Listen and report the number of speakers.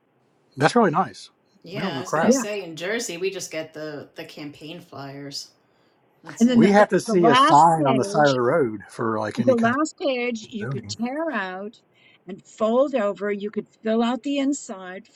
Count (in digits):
3